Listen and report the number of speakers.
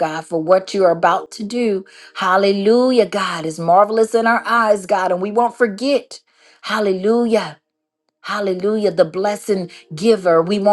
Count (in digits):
1